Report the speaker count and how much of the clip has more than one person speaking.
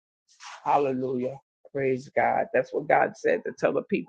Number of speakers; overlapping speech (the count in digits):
1, no overlap